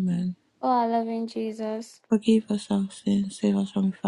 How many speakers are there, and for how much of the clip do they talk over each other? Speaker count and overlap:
two, no overlap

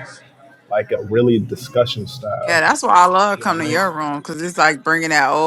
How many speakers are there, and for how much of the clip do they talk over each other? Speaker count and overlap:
two, about 10%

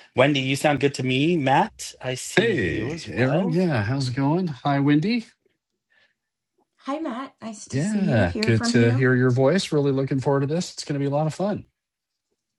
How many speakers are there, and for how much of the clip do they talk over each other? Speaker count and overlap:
three, about 20%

